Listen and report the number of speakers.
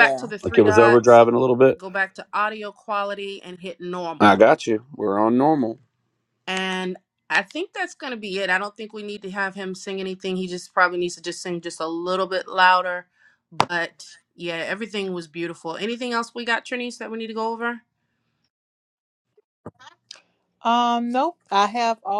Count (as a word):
three